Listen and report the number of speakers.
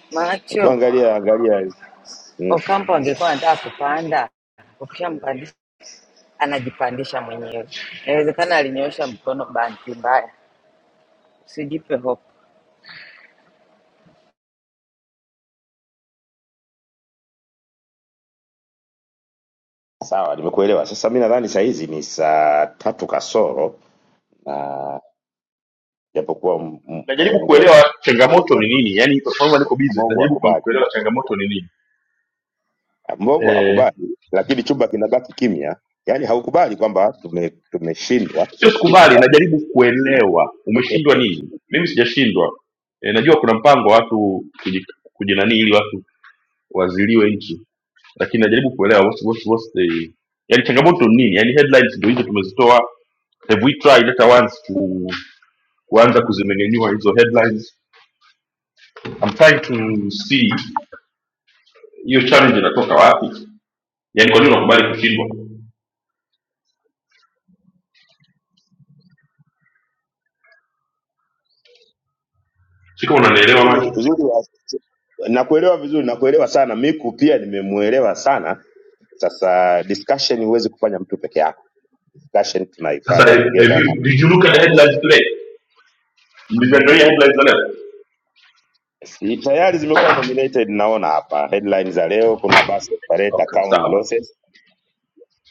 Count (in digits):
3